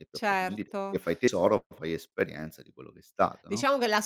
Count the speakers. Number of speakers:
2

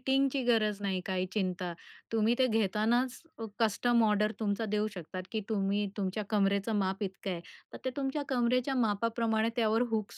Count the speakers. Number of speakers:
1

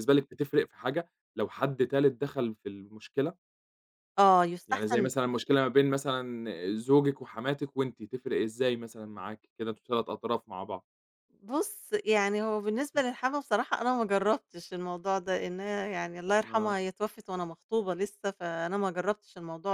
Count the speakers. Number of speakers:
2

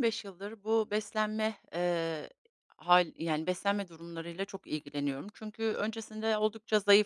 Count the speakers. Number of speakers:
1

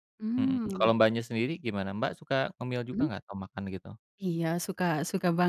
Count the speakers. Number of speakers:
2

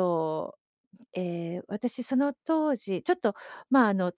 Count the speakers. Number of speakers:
1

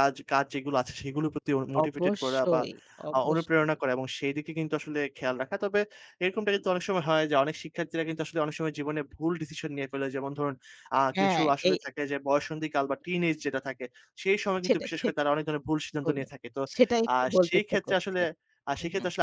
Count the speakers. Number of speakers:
2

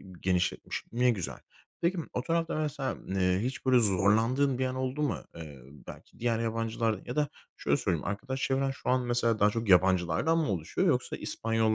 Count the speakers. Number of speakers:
1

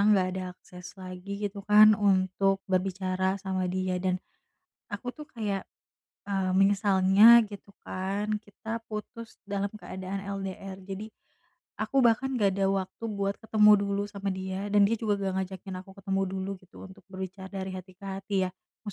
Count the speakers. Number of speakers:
1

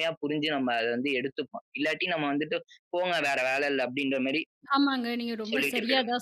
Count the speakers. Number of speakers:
2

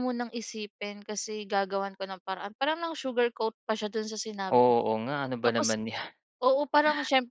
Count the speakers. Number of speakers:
2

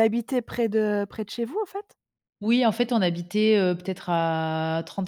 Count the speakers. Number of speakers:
2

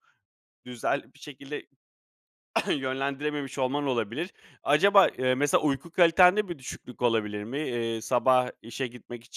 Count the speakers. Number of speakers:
1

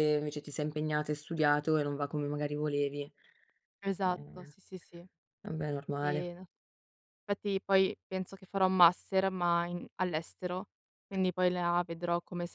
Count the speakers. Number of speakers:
2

